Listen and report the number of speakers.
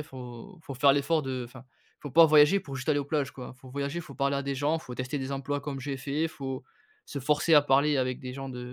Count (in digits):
1